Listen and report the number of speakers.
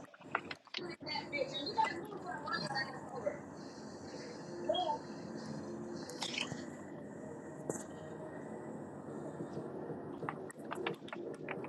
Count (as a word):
zero